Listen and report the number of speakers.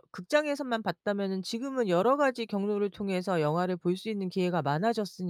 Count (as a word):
one